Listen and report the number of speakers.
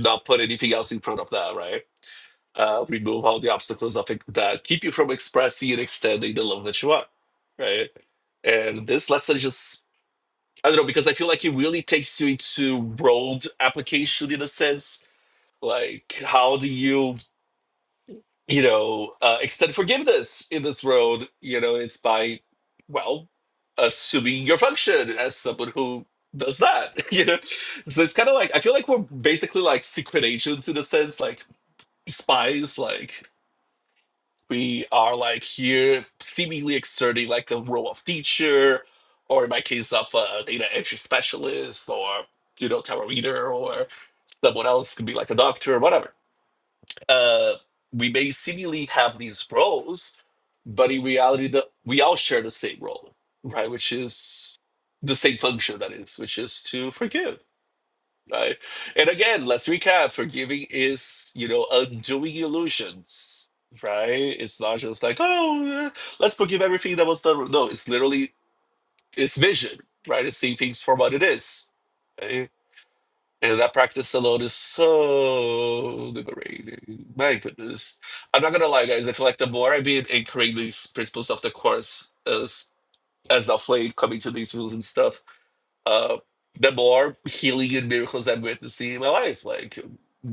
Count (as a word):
one